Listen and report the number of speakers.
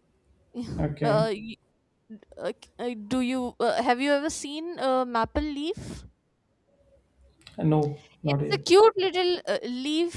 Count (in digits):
2